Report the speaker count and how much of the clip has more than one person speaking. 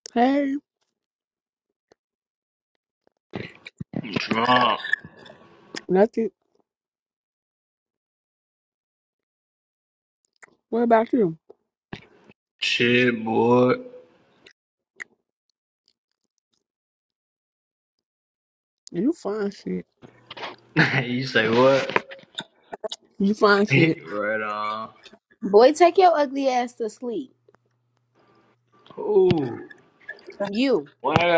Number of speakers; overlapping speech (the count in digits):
3, about 1%